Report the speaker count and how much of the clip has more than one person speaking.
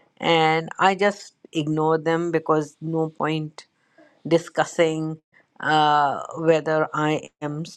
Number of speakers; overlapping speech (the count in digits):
1, no overlap